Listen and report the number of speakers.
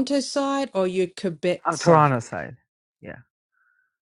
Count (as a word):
two